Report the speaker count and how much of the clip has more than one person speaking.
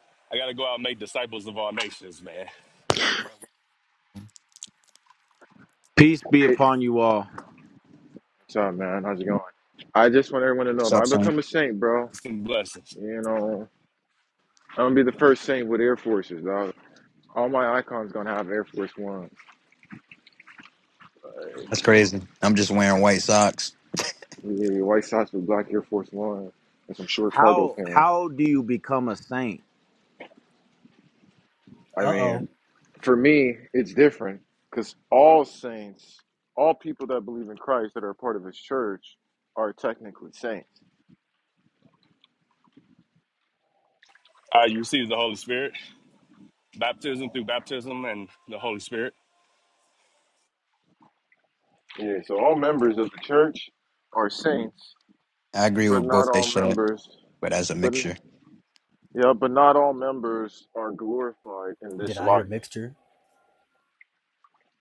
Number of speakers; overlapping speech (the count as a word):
five, about 5%